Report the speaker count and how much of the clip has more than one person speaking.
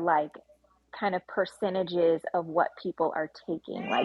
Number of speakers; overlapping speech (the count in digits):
1, no overlap